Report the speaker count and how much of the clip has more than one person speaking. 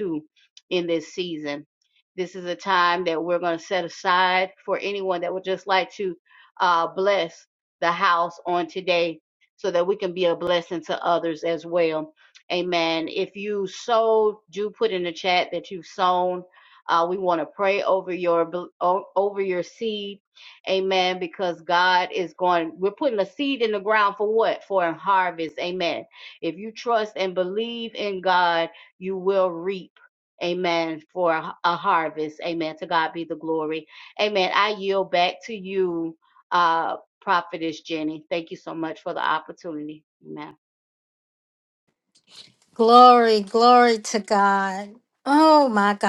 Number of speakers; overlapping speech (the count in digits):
2, no overlap